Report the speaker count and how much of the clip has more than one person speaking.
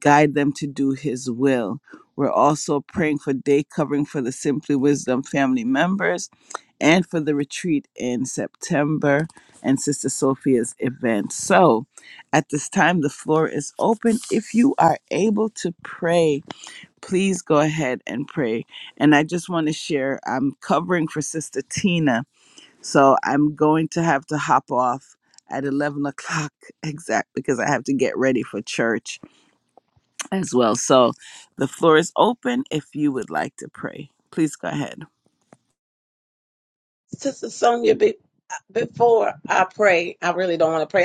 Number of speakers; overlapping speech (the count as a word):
two, no overlap